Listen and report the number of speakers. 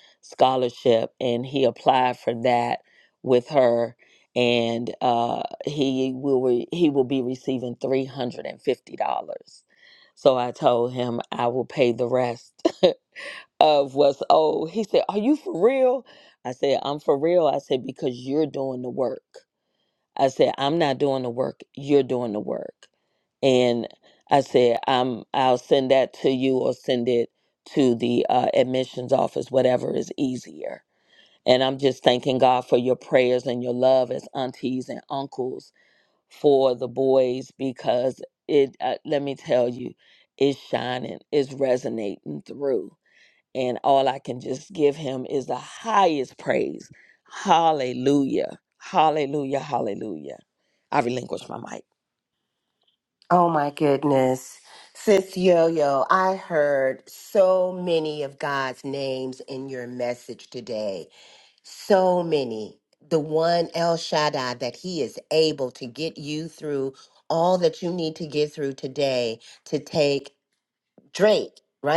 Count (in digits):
2